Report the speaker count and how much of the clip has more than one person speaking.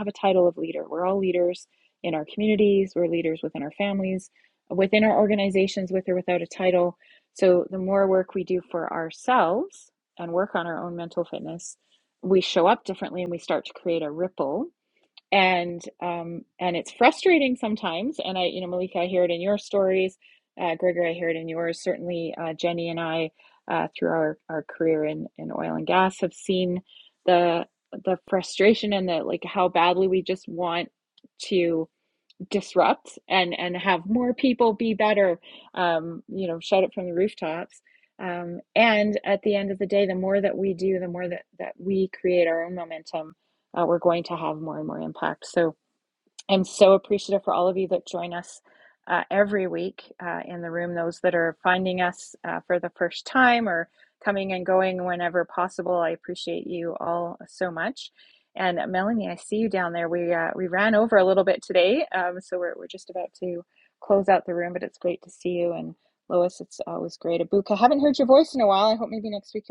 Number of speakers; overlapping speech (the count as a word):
one, no overlap